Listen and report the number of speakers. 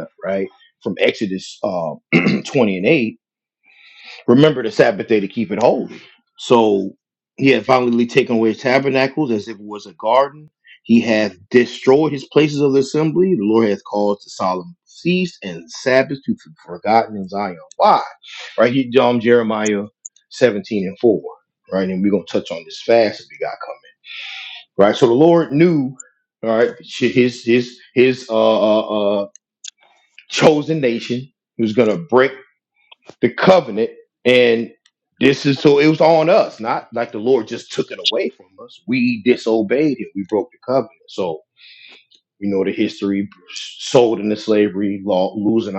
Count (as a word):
one